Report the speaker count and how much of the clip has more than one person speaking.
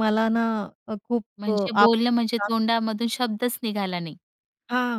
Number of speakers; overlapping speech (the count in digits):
2, about 5%